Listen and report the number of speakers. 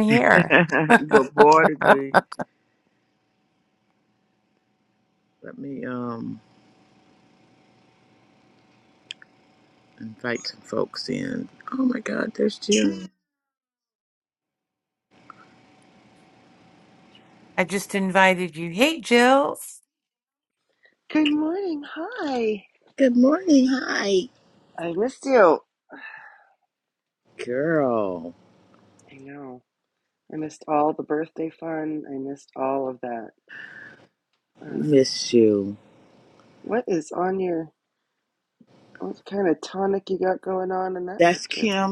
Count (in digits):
3